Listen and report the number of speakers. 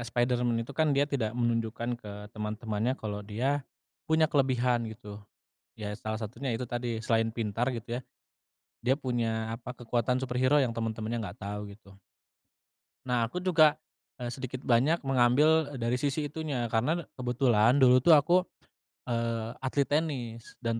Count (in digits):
1